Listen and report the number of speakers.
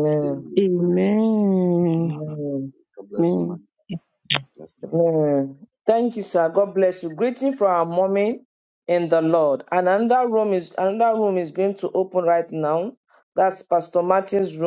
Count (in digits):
3